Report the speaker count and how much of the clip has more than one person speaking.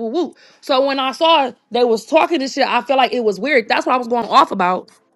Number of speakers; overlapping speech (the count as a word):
one, no overlap